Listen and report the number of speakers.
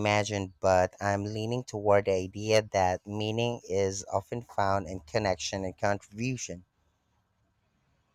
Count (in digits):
1